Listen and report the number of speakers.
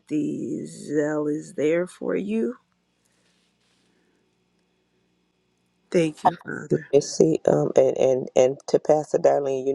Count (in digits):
2